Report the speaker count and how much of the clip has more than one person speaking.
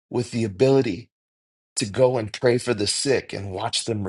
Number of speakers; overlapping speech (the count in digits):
1, no overlap